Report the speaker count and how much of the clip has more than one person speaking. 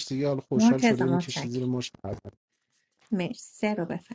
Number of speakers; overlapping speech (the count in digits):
2, about 25%